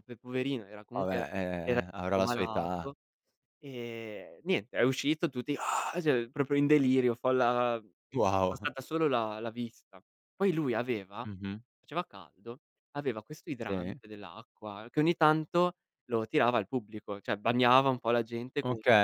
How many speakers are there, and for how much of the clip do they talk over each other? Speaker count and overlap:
2, about 9%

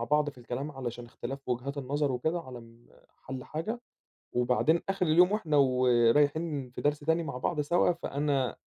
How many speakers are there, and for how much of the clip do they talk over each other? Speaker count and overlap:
1, no overlap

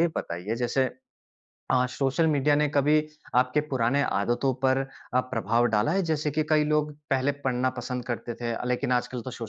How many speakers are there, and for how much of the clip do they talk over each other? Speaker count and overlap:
1, no overlap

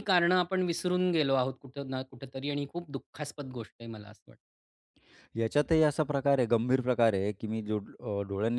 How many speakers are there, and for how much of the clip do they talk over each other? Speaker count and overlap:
2, no overlap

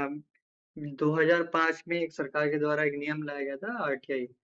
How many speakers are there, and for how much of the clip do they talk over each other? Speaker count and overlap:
1, no overlap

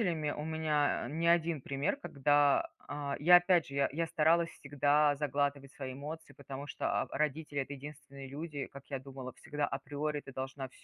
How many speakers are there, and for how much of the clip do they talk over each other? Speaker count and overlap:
1, no overlap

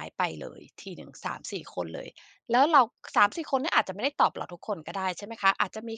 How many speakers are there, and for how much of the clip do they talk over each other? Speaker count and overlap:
1, no overlap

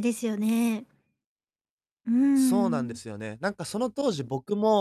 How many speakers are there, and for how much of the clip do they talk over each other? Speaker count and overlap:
2, about 11%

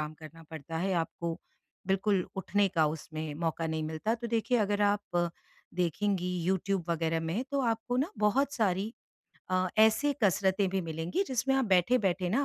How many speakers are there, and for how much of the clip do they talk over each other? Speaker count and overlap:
1, no overlap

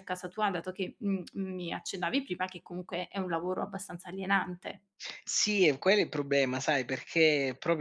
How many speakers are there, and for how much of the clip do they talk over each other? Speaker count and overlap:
2, no overlap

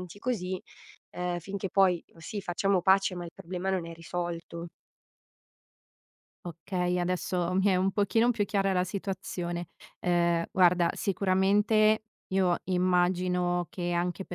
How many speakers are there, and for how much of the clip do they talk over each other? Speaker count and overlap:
2, no overlap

